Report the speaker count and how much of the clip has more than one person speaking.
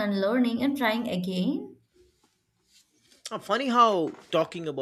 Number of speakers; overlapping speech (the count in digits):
2, no overlap